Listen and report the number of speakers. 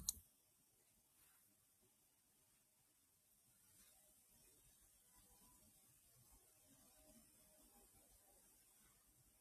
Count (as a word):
zero